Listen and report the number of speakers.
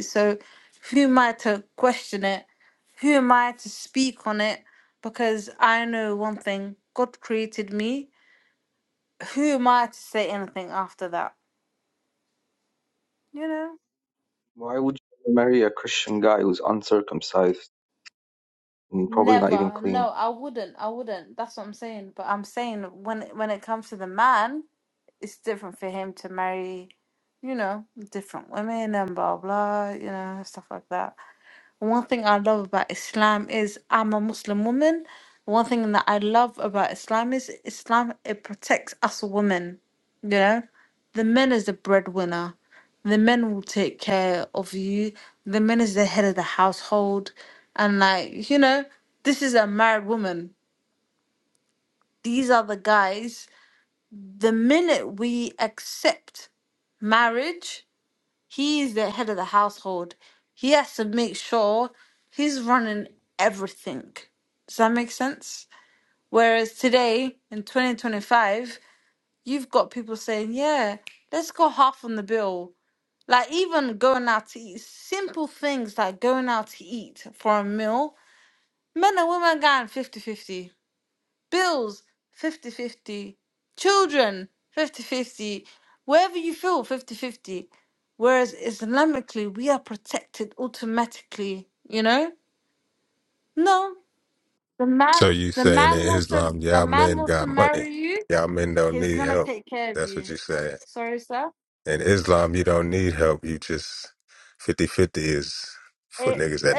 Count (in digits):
3